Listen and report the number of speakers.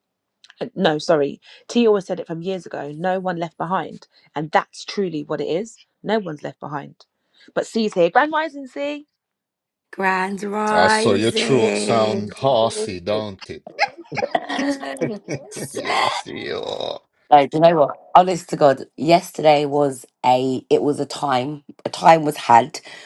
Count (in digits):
3